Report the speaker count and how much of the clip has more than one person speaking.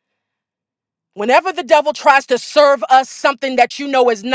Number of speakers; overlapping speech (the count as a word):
one, no overlap